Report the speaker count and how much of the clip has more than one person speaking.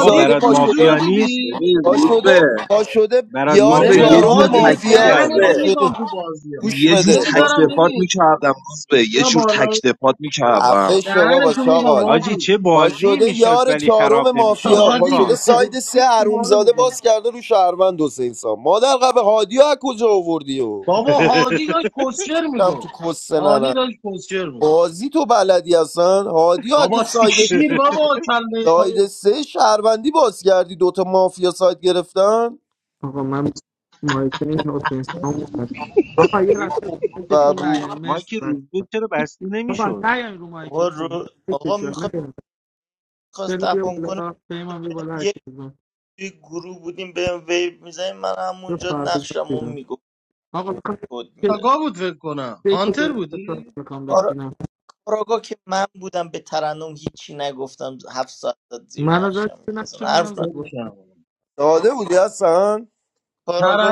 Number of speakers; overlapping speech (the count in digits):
6, about 33%